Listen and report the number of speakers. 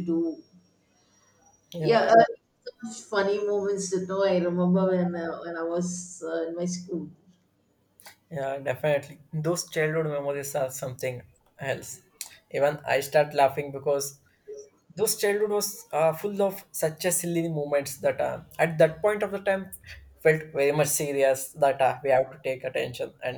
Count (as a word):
two